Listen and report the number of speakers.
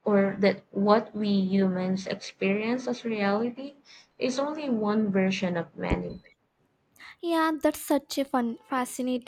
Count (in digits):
2